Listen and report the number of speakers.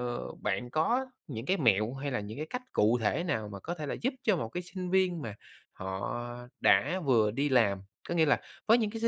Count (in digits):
1